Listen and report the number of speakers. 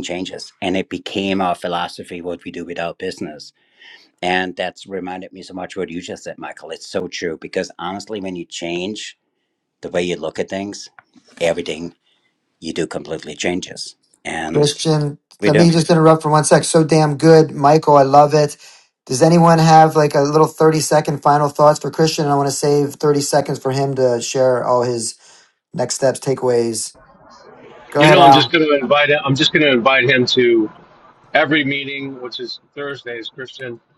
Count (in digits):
3